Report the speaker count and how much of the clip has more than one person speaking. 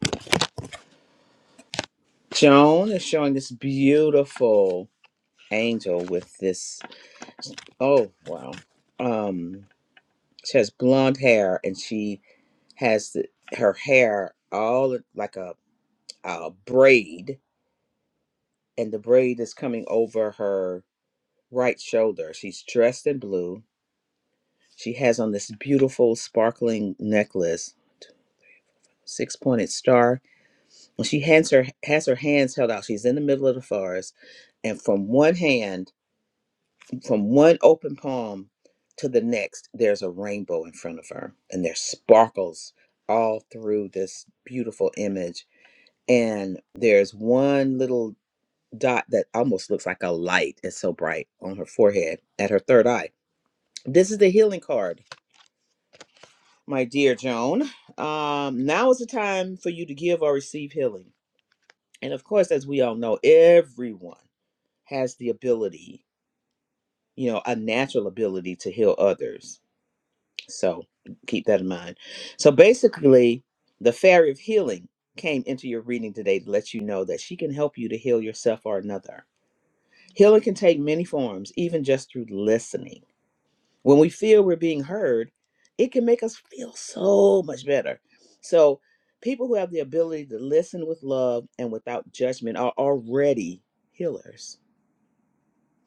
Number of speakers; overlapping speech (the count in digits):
1, no overlap